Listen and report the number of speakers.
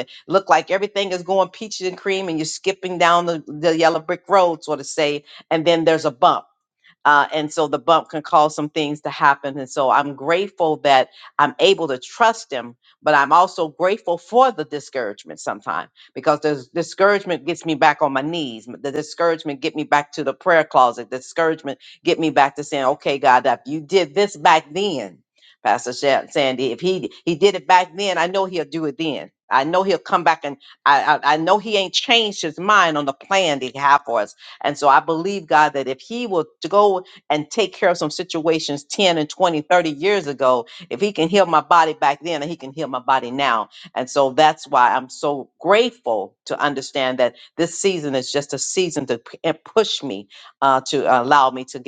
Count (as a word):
one